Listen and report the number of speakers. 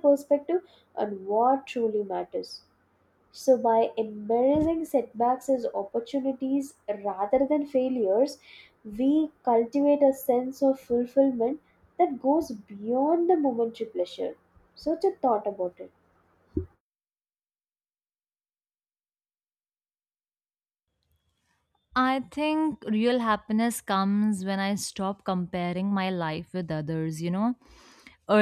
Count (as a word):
two